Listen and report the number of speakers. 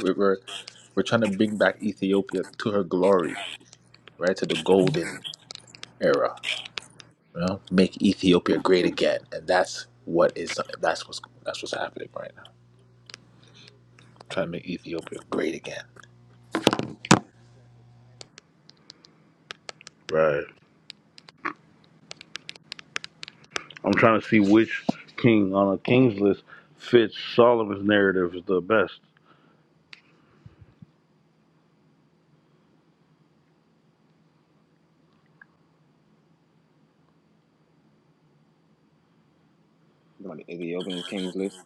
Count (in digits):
3